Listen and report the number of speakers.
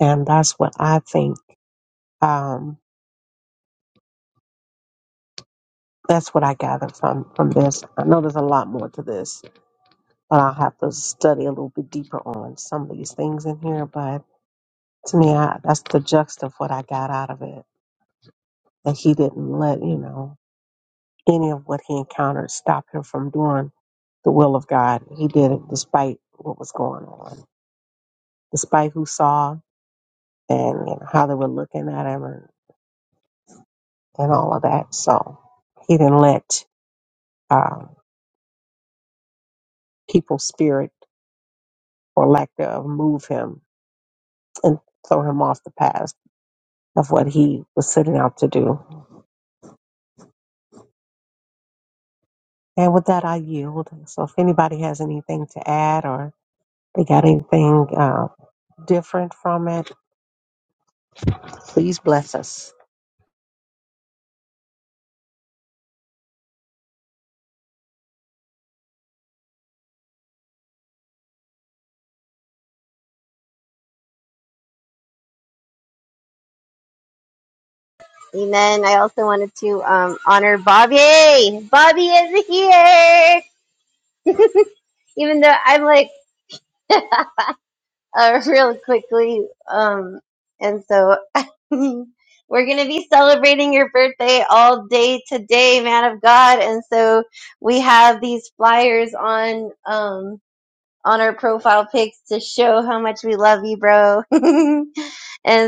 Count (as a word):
two